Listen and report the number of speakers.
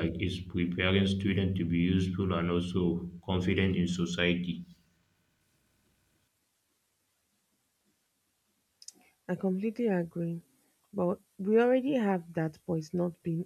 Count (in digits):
2